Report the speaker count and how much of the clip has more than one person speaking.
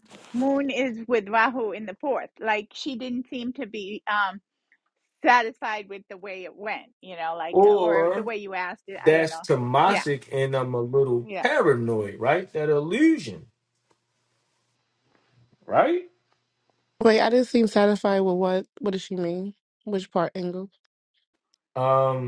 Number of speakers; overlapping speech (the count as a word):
three, about 7%